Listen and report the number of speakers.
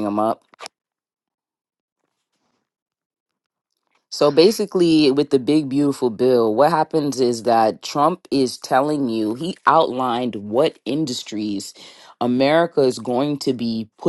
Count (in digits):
1